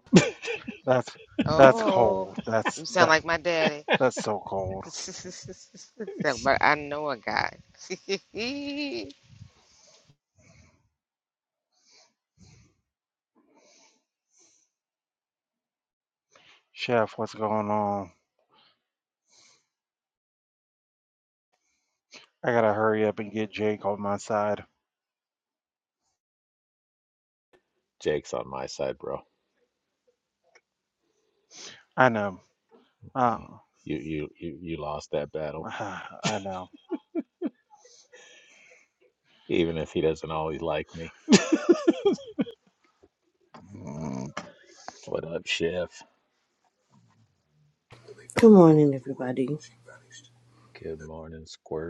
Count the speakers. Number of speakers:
4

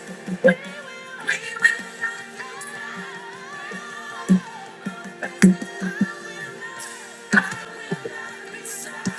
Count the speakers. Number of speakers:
0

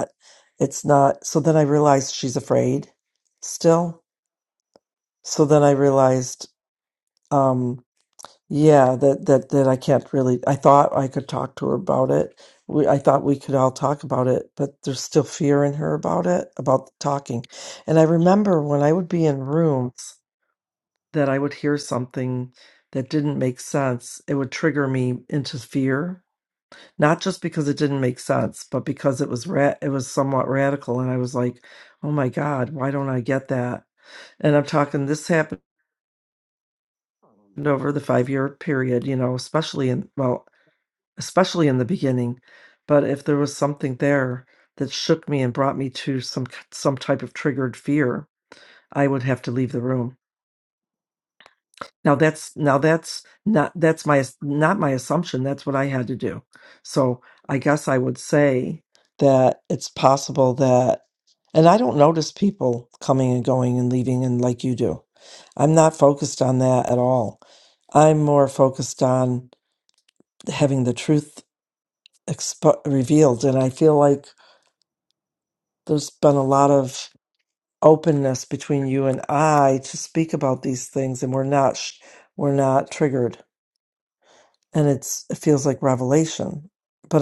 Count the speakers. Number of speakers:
1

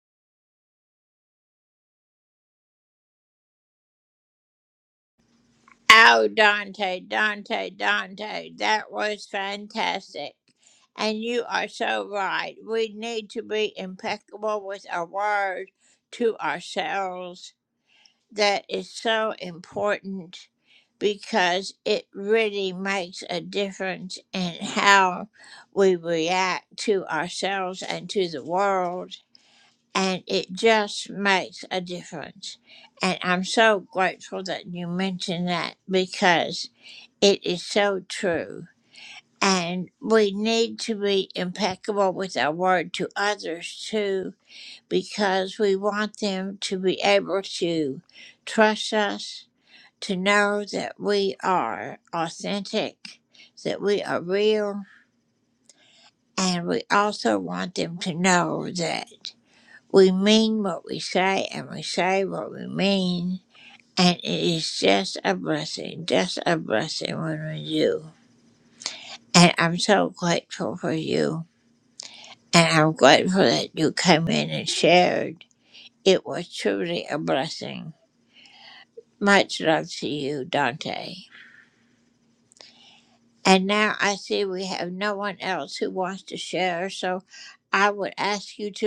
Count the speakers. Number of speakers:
1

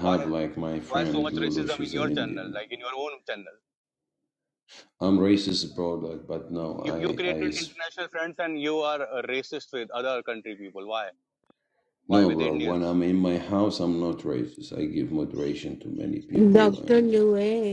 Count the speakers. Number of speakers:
3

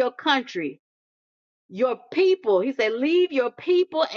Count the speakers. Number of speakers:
1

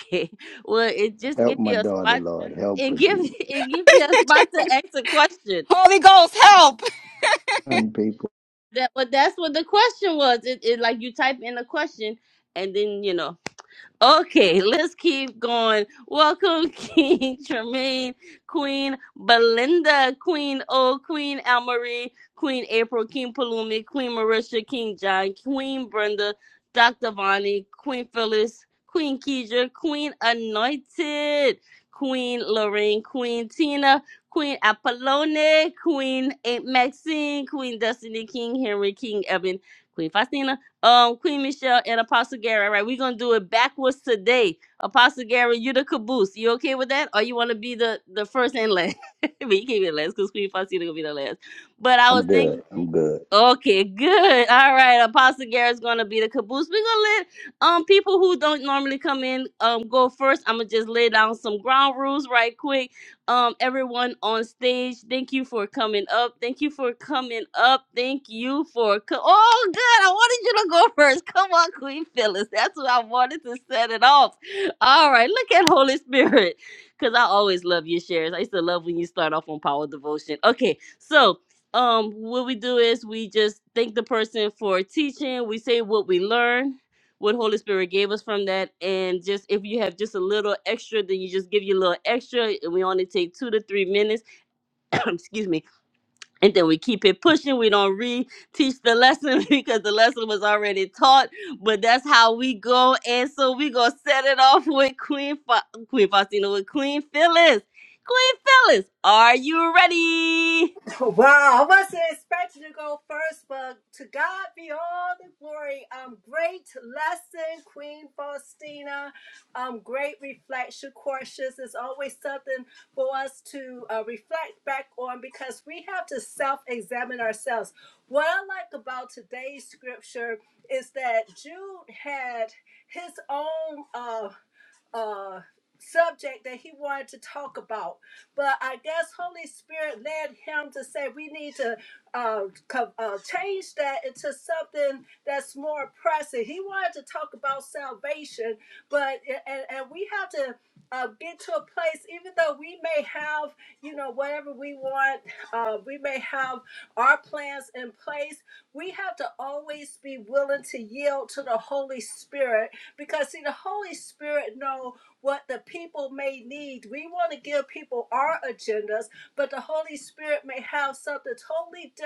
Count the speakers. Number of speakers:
4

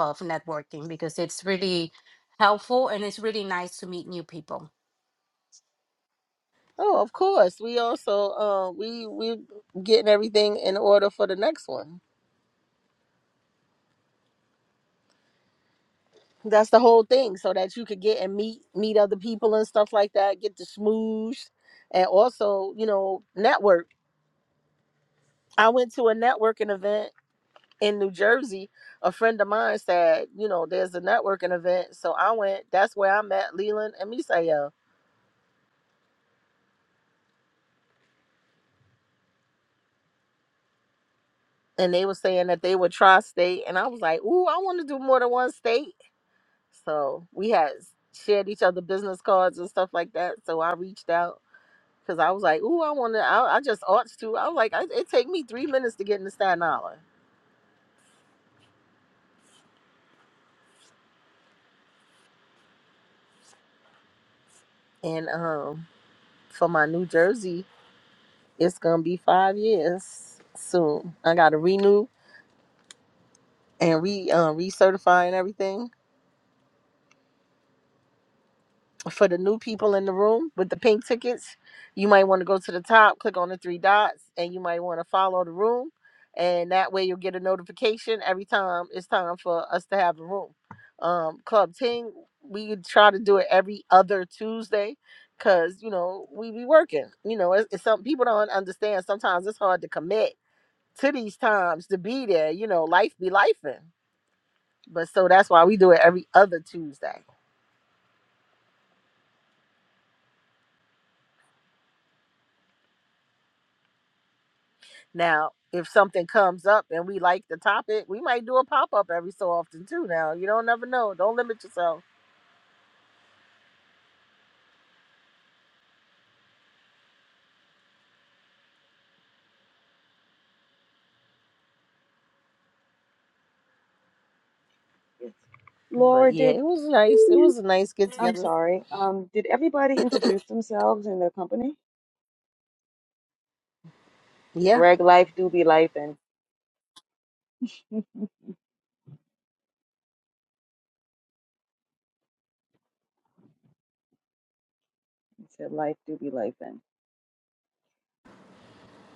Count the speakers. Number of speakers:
3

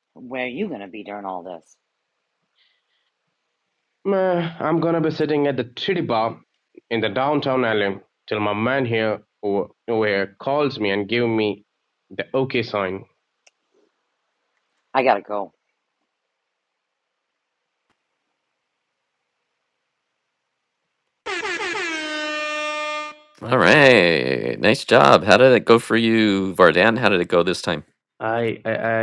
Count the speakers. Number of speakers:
3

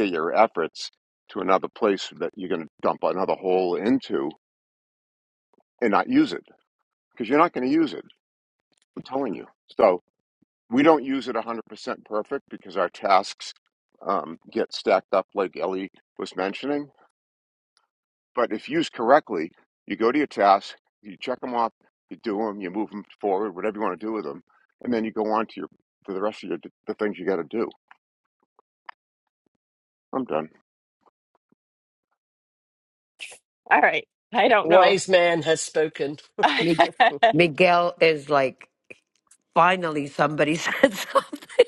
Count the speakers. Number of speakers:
4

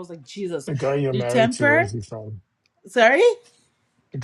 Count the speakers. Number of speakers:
2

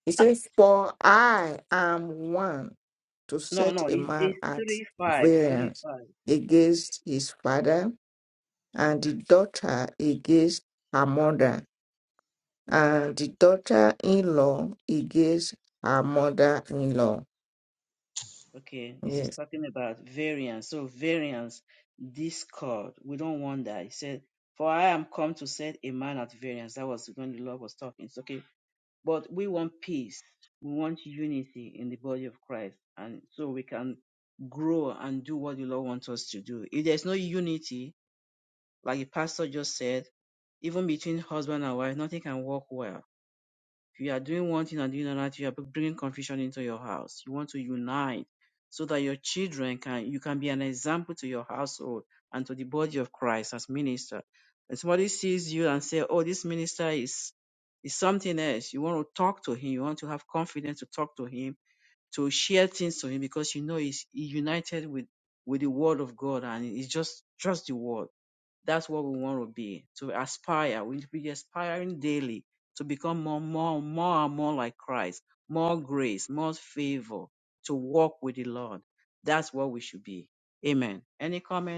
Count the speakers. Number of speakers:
2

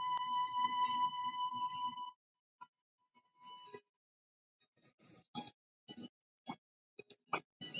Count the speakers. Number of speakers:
0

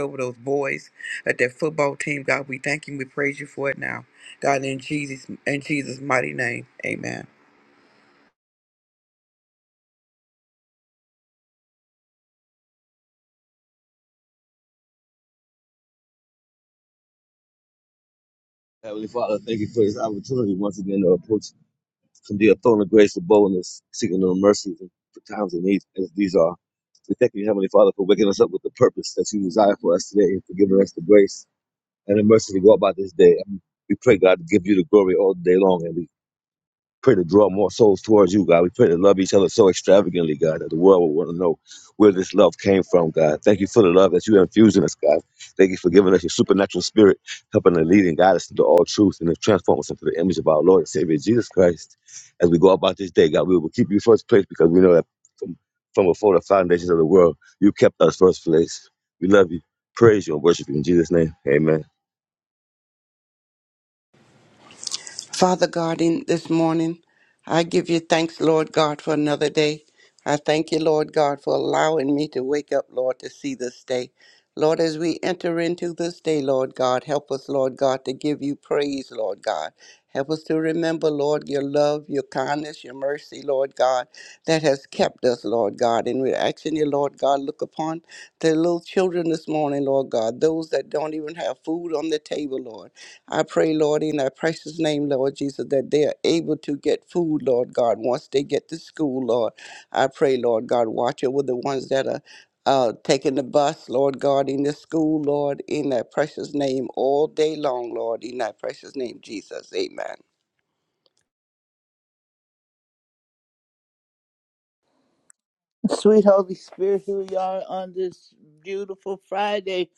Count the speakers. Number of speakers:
4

